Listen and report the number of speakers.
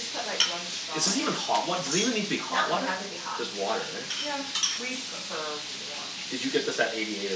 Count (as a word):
three